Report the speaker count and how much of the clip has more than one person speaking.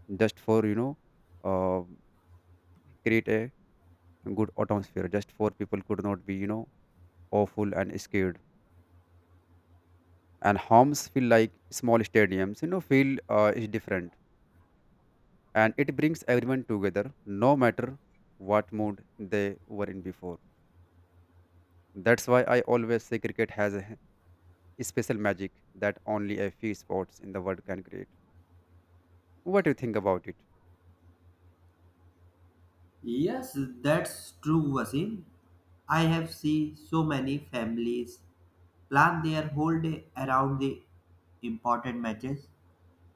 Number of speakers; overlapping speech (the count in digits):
2, no overlap